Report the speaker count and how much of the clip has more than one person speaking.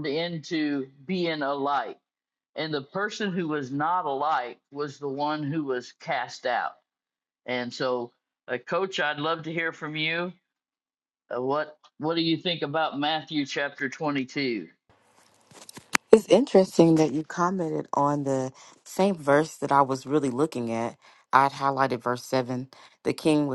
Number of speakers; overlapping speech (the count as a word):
two, no overlap